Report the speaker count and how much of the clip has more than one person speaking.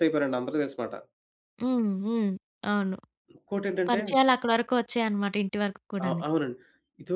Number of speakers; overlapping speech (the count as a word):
two, about 6%